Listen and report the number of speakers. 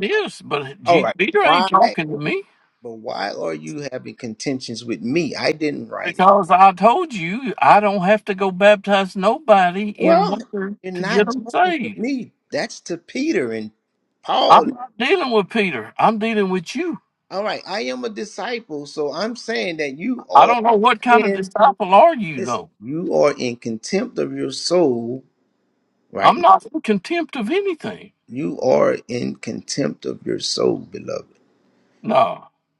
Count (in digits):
2